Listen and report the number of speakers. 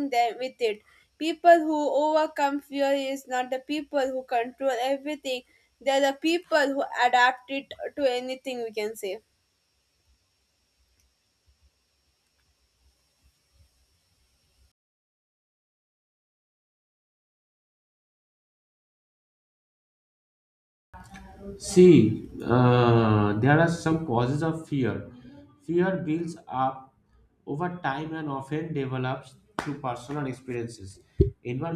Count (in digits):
2